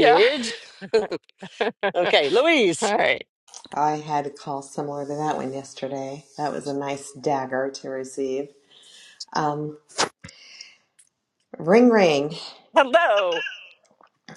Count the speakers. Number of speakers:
3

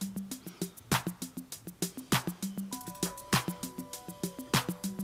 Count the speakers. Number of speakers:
0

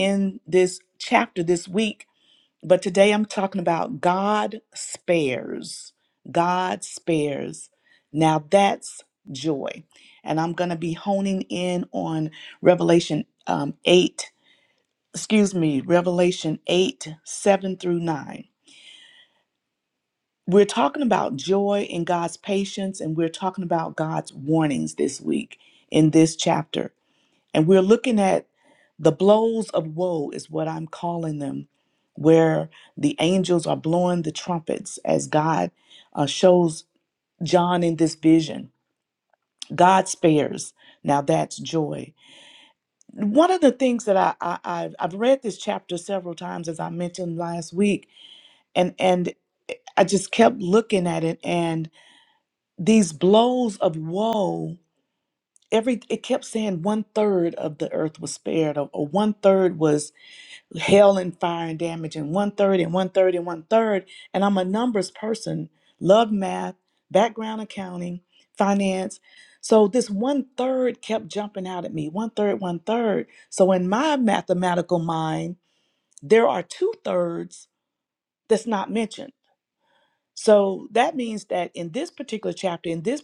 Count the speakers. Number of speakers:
1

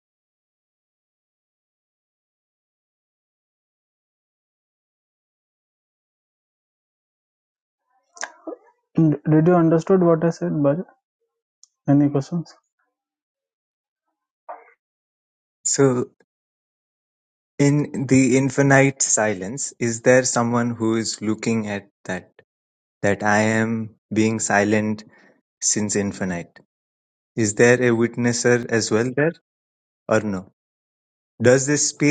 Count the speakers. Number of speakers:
2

